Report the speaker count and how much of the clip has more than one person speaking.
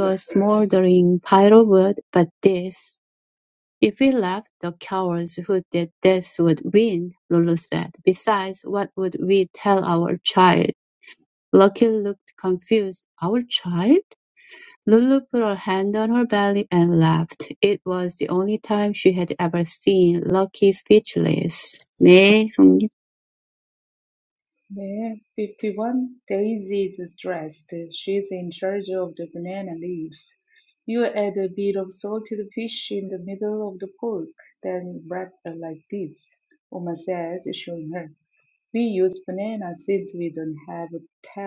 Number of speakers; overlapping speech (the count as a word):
two, no overlap